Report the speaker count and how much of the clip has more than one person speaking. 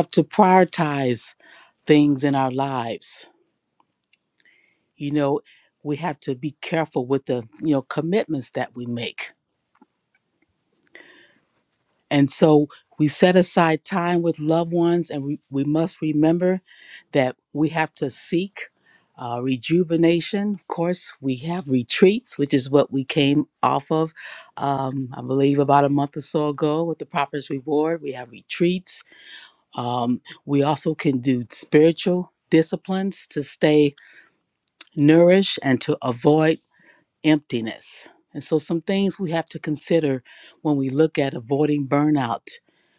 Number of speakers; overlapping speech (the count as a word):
one, no overlap